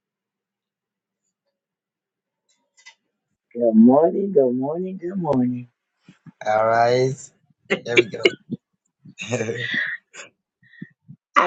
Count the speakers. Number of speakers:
two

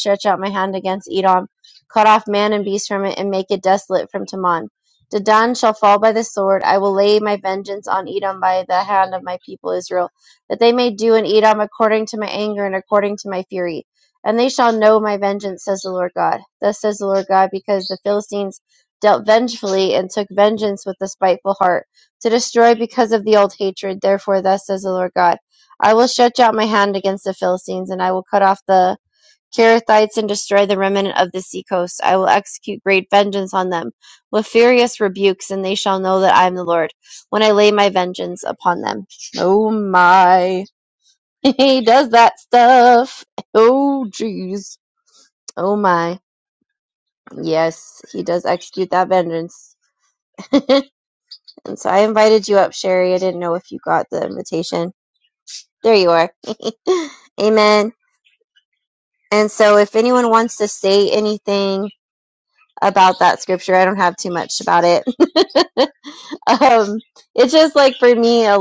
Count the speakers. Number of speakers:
one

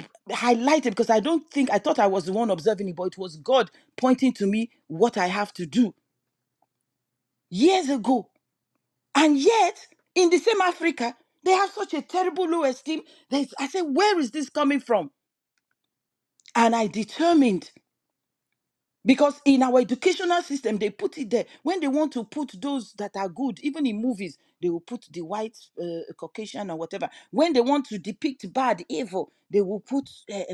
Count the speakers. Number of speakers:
one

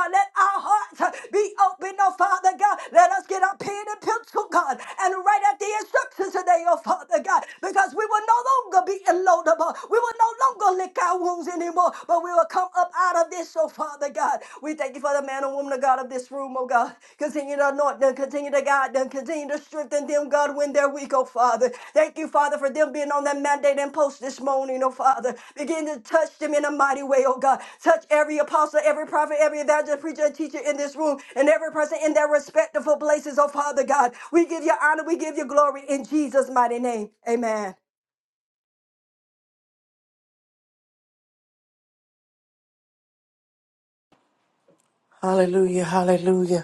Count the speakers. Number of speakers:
two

